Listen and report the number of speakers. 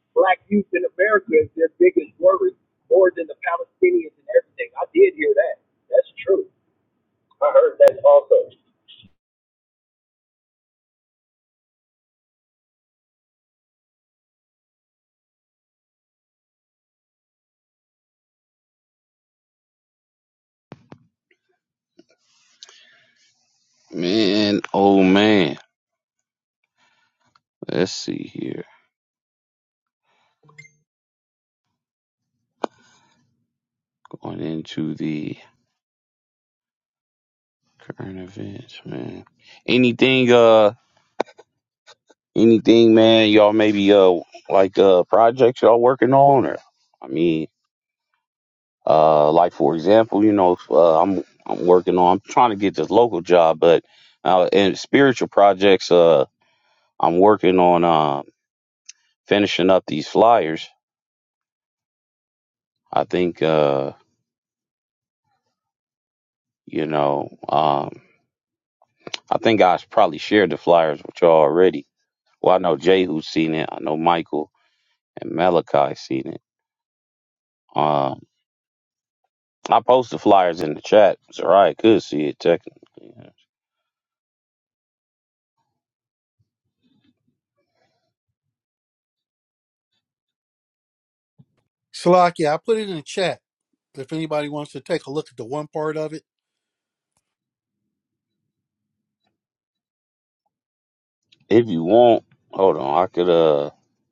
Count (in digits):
3